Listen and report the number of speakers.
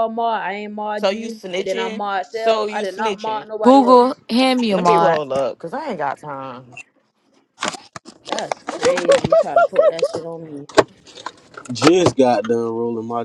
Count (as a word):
four